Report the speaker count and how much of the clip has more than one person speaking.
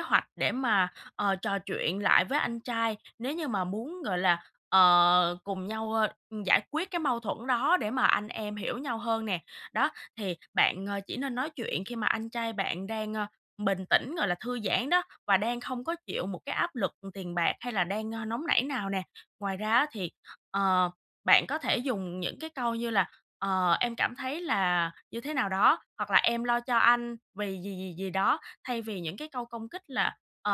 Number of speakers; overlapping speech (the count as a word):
one, no overlap